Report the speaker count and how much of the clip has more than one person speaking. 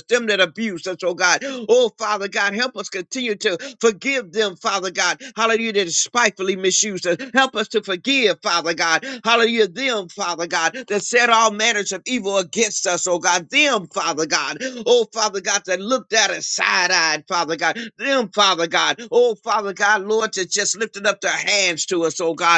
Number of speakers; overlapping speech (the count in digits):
1, no overlap